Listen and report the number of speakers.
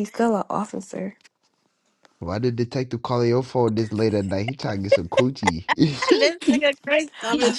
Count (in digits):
3